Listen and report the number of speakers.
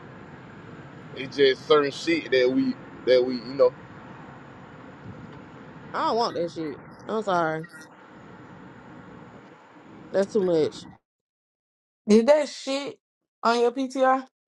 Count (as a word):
three